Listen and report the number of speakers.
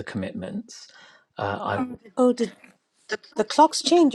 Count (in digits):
2